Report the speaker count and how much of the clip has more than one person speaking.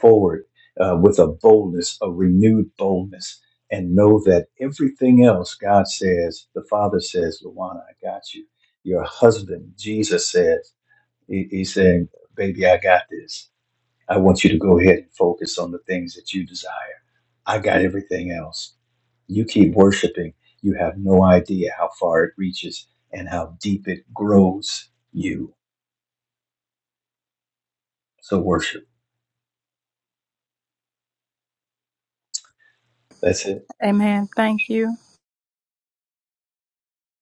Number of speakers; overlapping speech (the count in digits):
2, no overlap